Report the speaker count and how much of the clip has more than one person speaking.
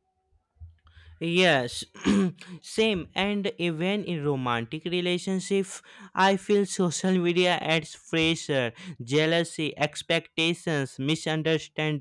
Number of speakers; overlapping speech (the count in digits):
1, no overlap